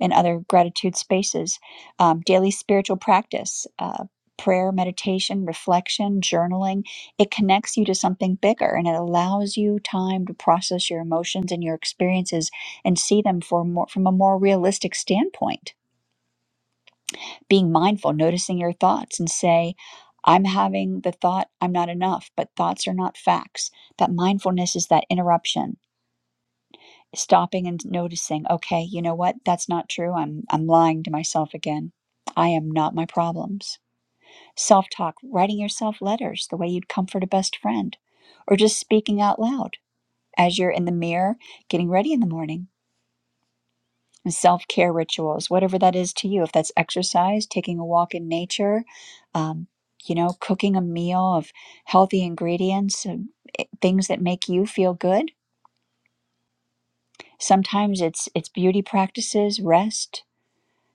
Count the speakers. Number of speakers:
one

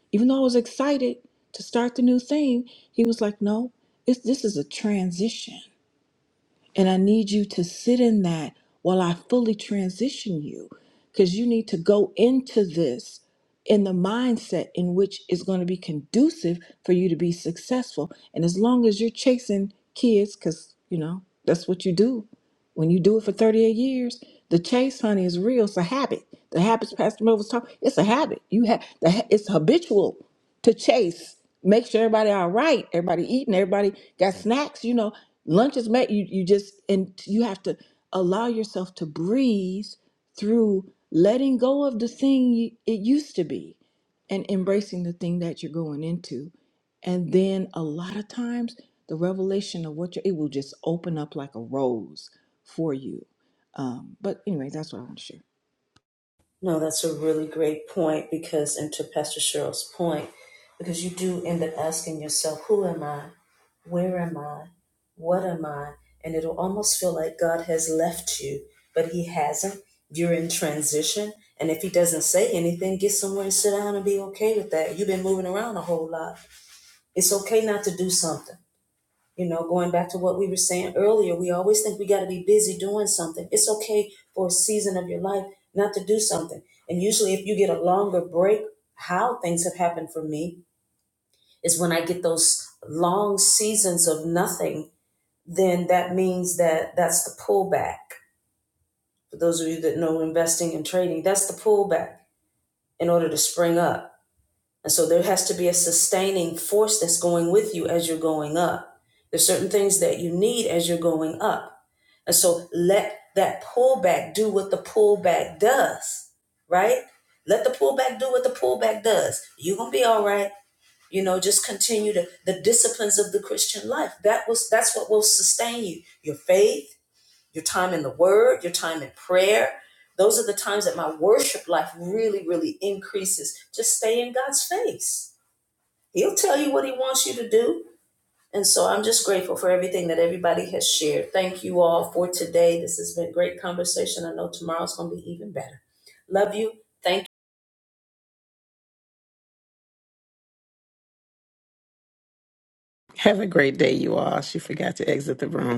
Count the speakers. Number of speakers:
three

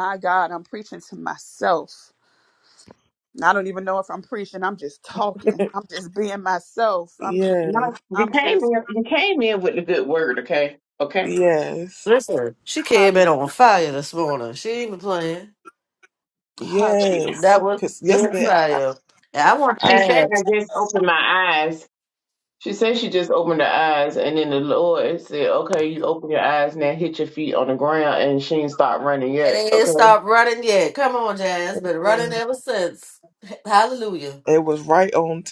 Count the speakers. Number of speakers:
four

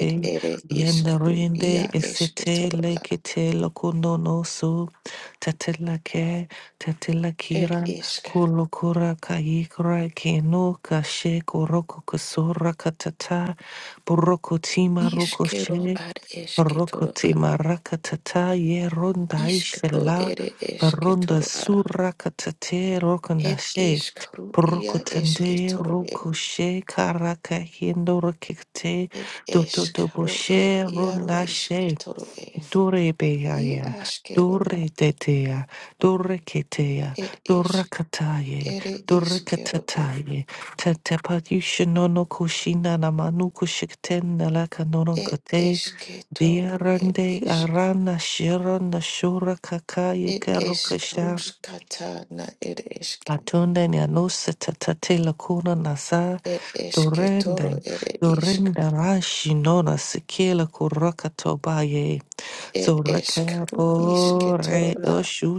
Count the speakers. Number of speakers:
two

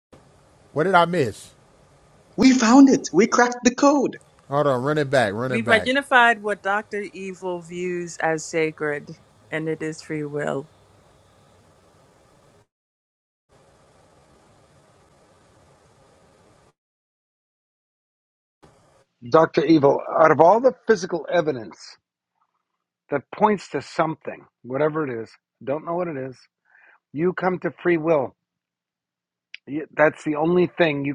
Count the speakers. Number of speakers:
four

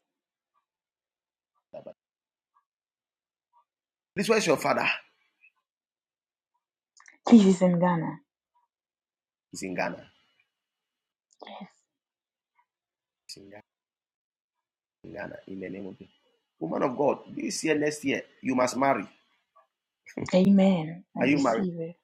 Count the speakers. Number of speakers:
two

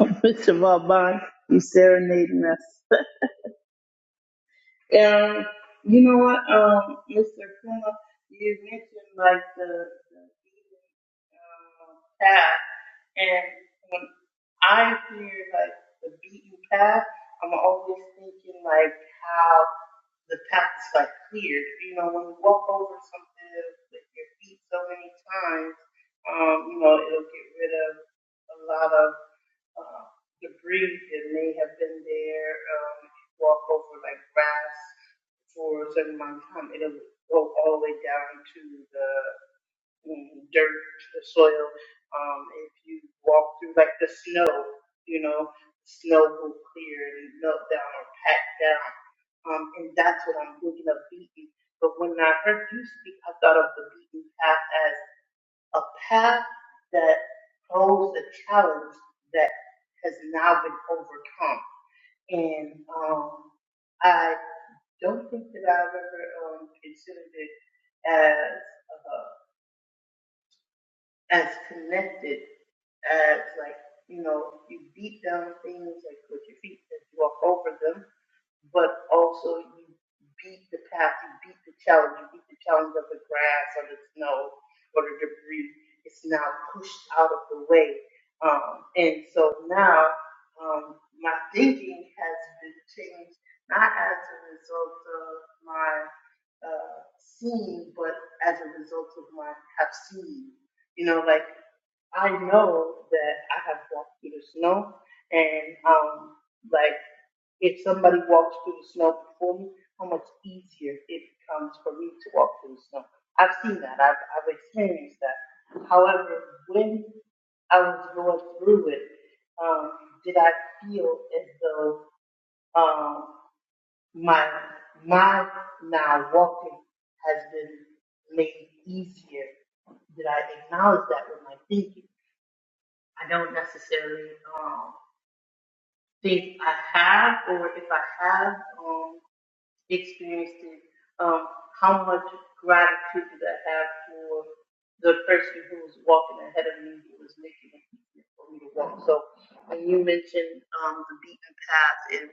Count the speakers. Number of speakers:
one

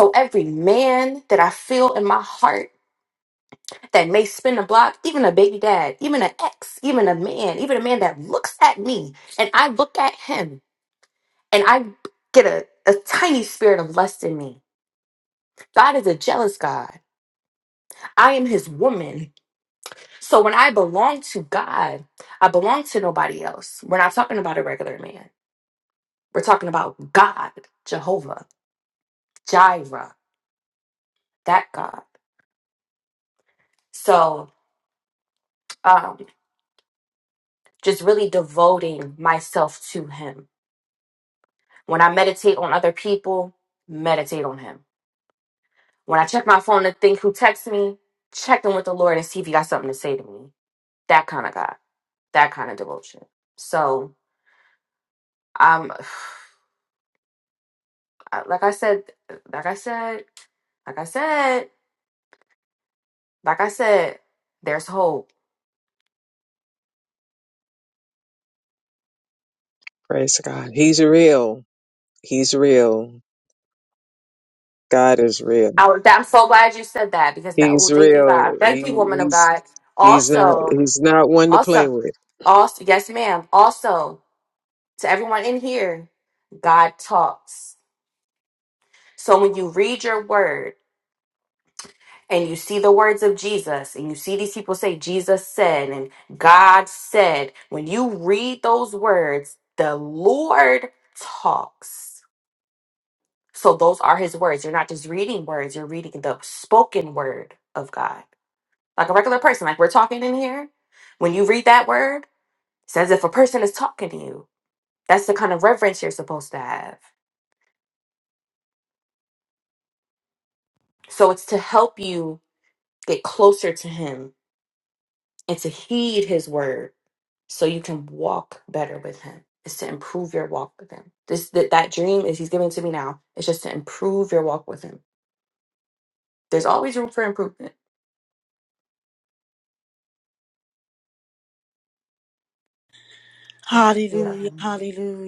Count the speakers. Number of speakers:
three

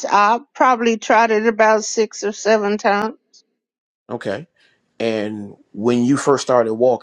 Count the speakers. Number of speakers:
two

